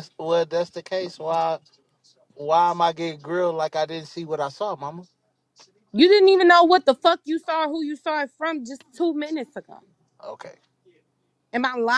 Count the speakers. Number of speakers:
2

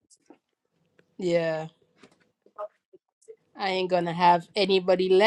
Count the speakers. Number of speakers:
1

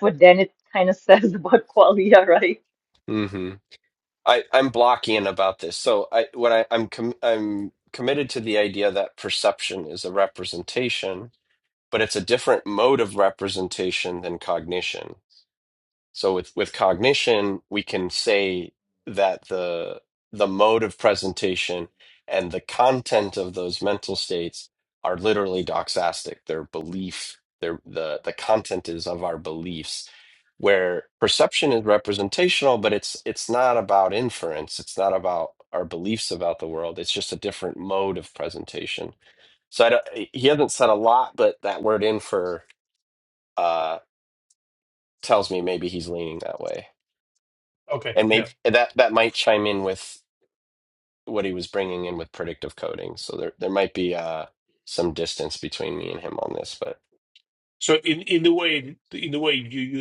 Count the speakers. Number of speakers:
3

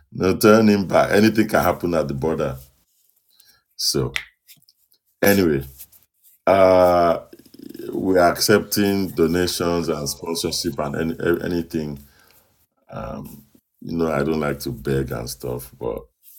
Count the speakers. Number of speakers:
1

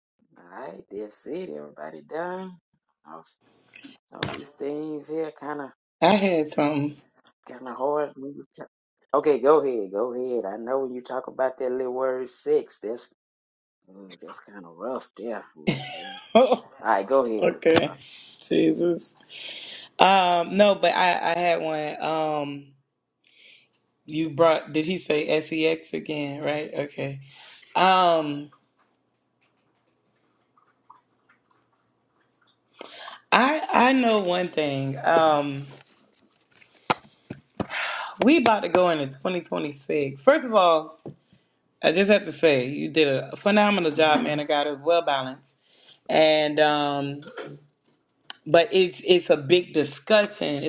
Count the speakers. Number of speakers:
2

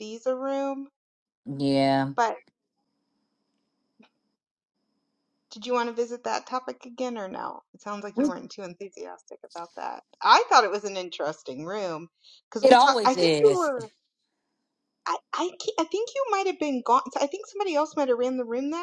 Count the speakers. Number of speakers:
2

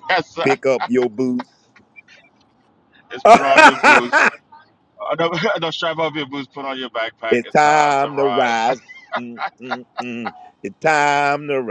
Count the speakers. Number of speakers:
2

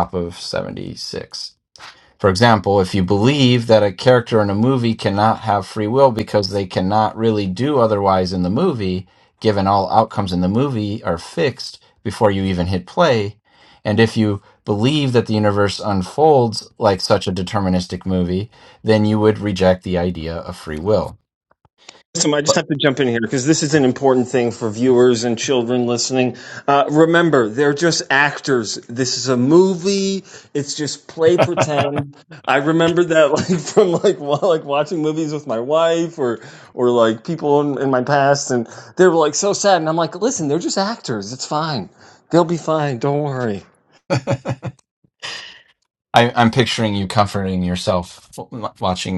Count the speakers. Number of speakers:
2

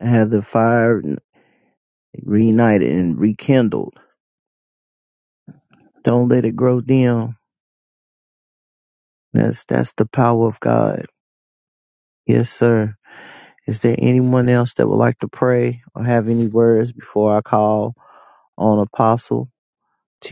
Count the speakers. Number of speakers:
1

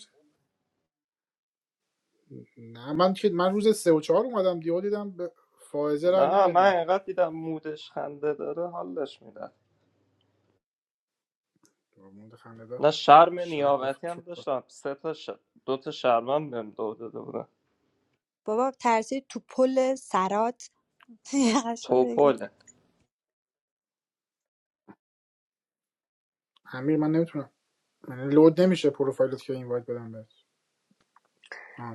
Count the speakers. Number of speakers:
3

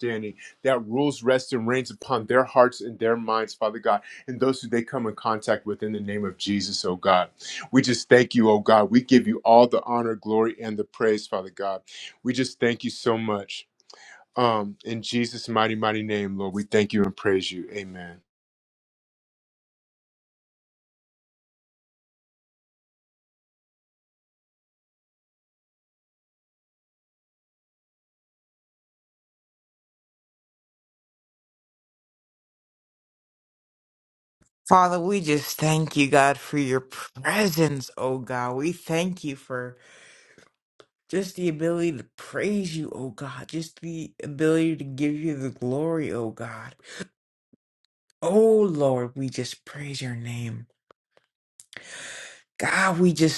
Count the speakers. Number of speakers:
2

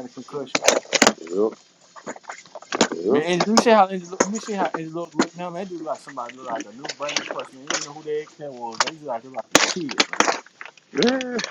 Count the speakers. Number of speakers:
2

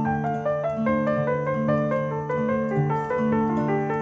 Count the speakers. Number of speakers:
0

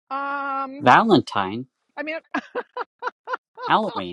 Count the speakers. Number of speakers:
2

